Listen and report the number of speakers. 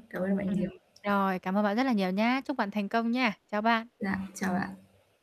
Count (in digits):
2